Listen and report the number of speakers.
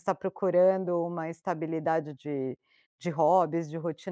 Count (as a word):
one